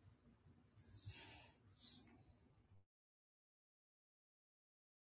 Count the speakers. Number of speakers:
0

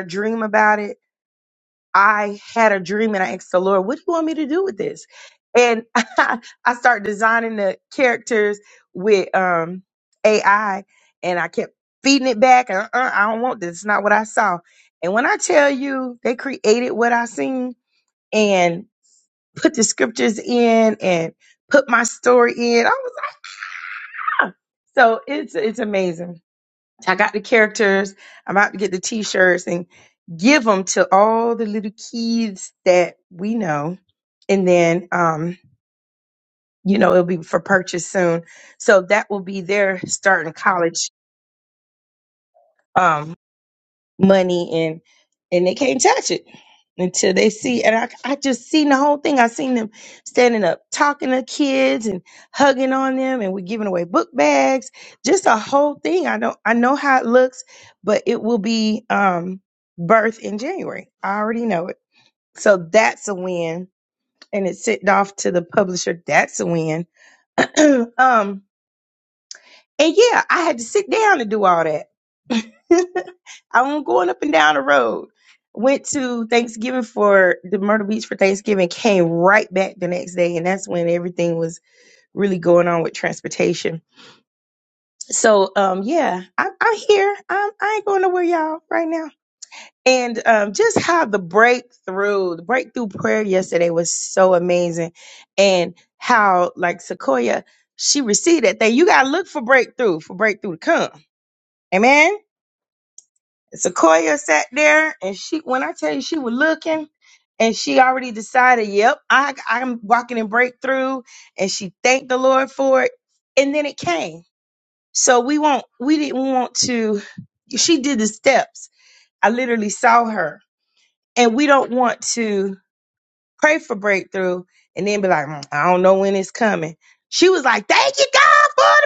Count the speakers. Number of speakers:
1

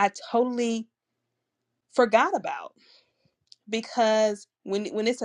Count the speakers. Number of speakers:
1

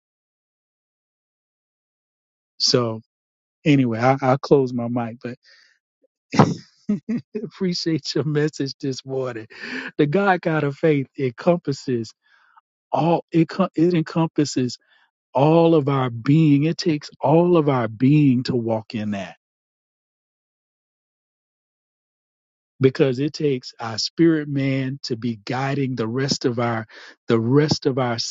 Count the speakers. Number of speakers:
1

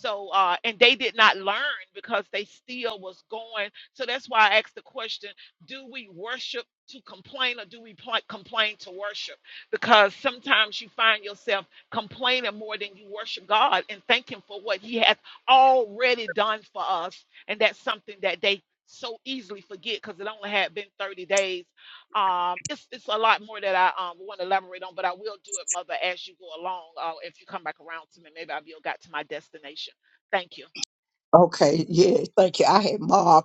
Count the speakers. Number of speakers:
2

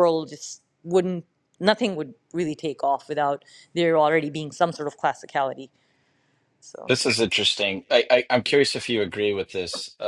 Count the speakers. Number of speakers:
2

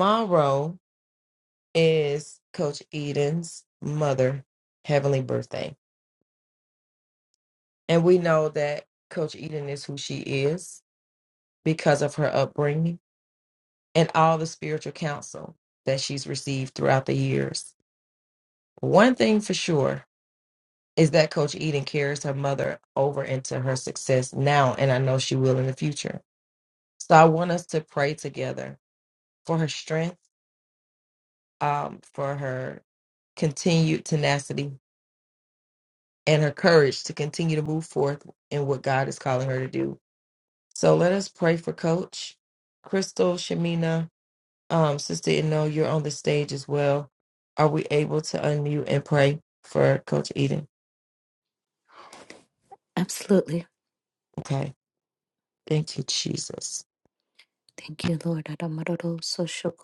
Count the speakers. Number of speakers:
2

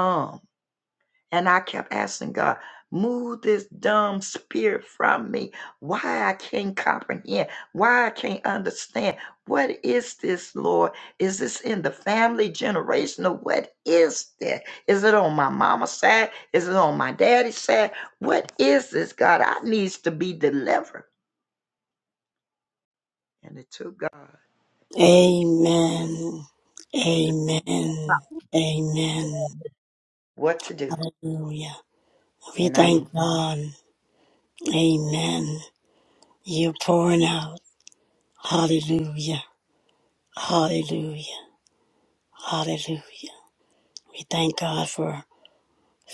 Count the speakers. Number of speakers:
2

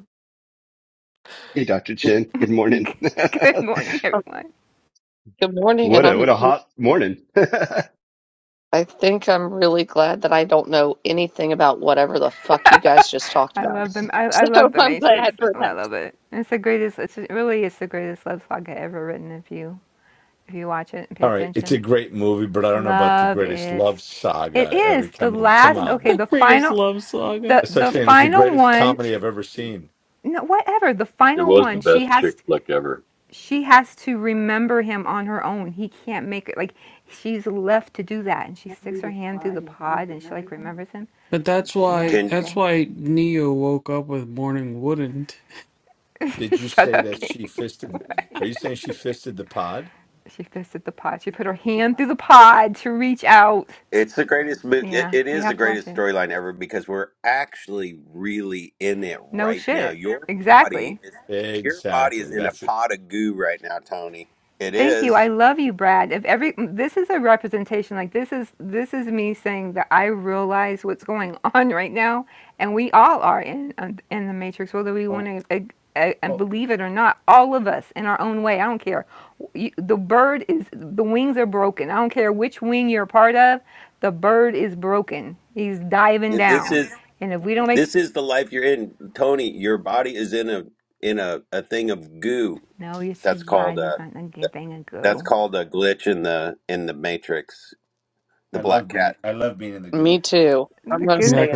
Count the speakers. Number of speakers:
7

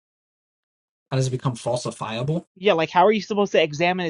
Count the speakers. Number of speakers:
2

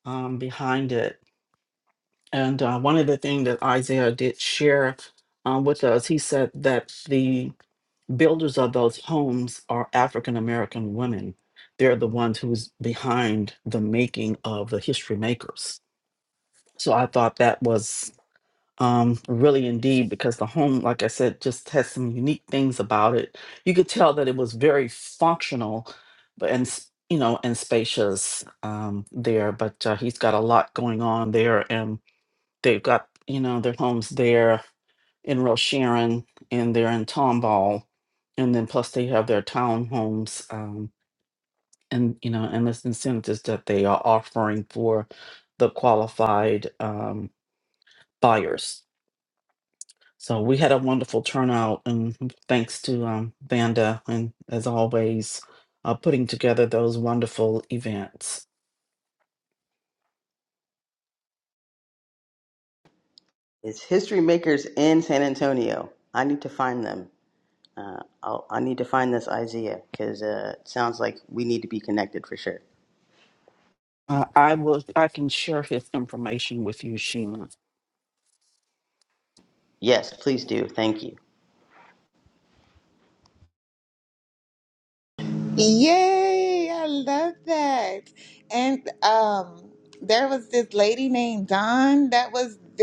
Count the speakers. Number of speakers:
3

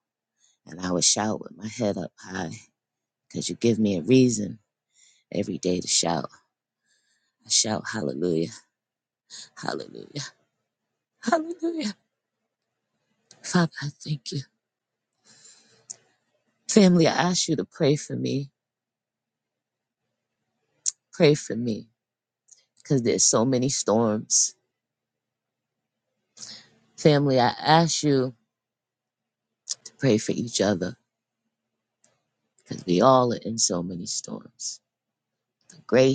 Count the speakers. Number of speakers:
1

